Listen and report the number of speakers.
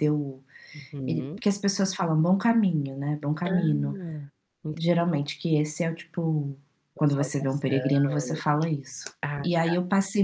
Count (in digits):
2